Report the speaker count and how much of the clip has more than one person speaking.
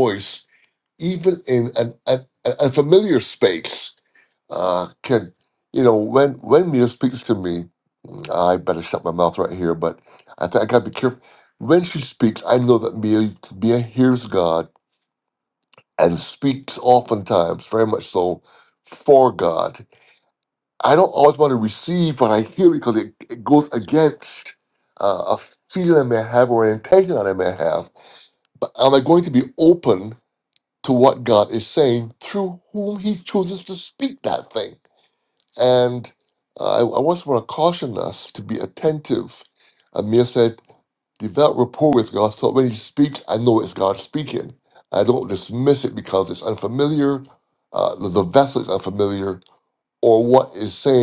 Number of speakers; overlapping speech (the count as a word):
one, no overlap